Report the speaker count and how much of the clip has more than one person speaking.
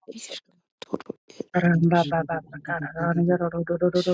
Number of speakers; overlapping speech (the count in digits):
2, about 19%